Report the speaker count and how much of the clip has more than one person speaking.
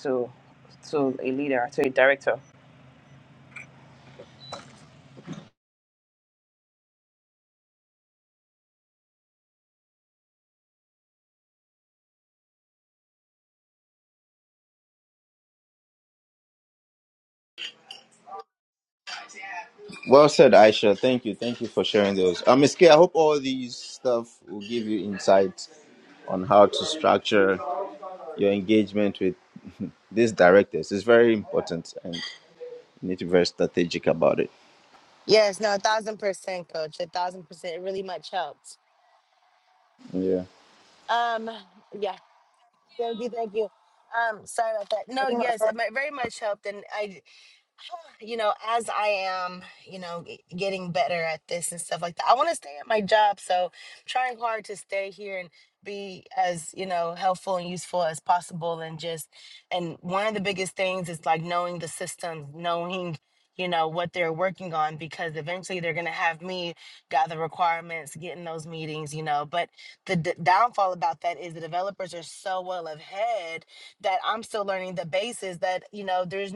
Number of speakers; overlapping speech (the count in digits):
3, no overlap